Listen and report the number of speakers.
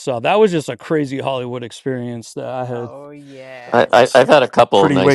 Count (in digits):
3